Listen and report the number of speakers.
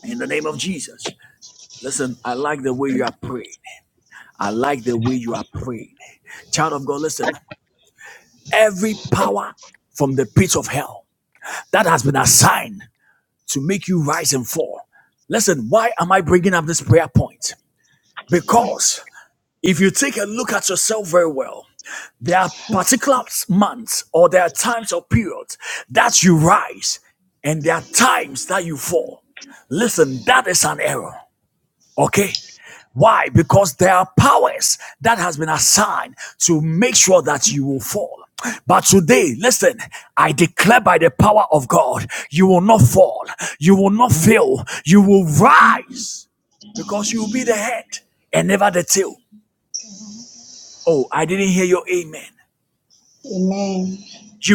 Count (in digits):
2